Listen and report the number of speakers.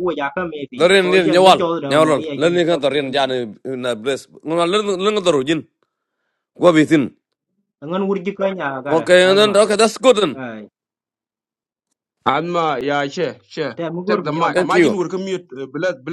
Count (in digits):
3